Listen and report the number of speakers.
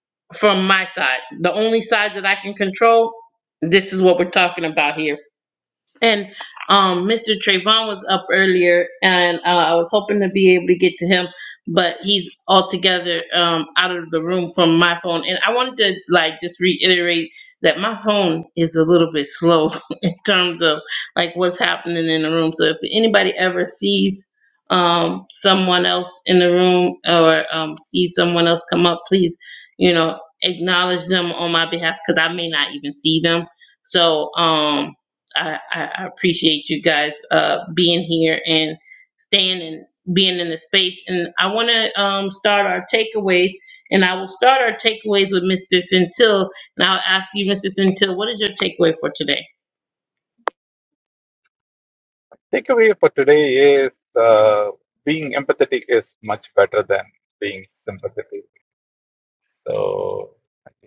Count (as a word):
two